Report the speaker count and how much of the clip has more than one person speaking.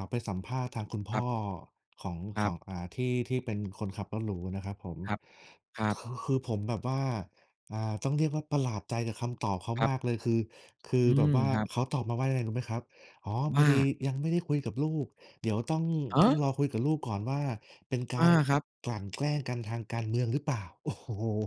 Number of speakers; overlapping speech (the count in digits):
2, about 8%